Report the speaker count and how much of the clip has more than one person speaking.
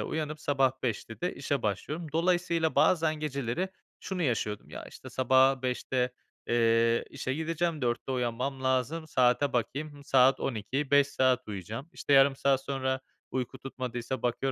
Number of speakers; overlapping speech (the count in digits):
1, no overlap